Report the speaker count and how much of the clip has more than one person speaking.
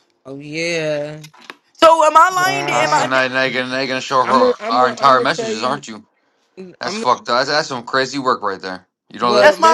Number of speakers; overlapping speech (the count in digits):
3, about 33%